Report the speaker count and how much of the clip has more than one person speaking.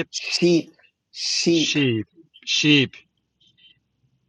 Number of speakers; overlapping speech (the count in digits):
2, about 7%